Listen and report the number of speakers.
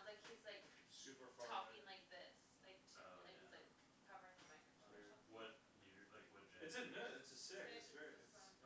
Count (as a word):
three